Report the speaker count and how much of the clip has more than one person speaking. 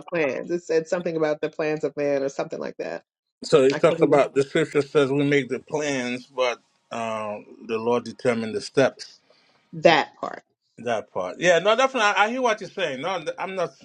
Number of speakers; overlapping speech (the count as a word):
two, about 3%